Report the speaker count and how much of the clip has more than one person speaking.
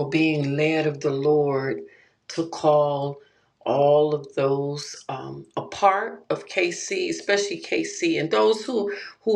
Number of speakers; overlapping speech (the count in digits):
1, no overlap